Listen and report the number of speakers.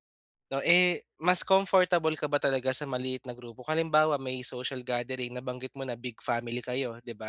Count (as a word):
one